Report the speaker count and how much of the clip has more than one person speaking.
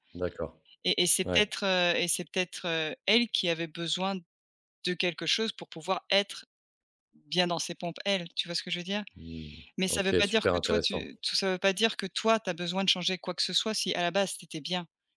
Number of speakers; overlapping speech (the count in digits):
2, about 9%